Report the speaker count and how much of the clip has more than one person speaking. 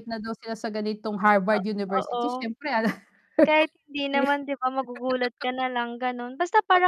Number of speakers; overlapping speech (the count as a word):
two, about 8%